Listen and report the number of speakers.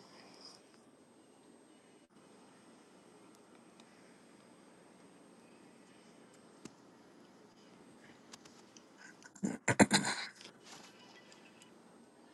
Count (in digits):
0